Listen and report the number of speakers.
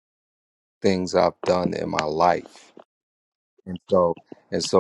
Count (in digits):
1